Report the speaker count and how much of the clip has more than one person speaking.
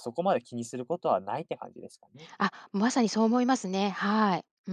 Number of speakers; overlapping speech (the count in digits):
2, no overlap